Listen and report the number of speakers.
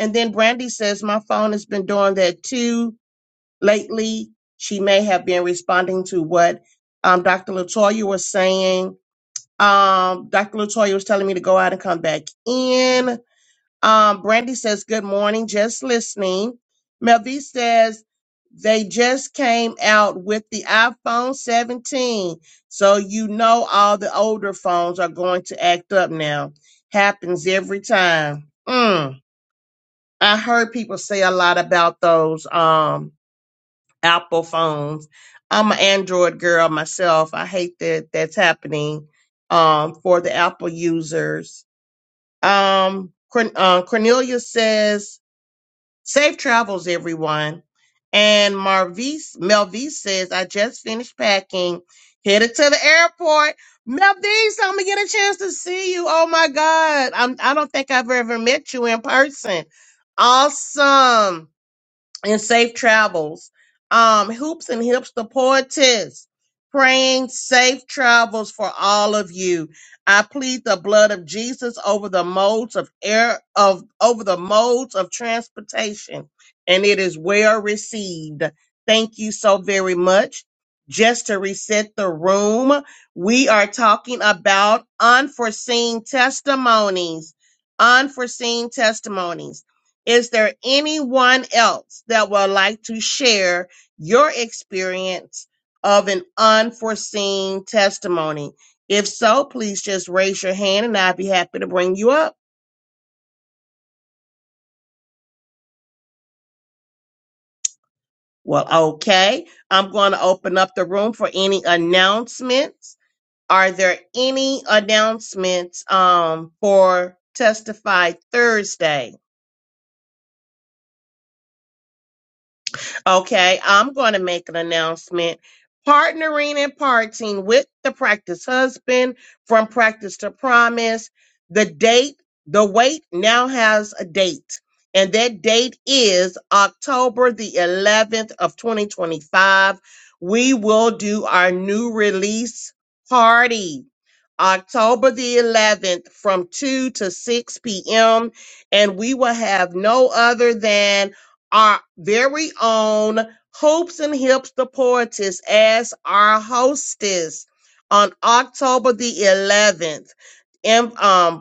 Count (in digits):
1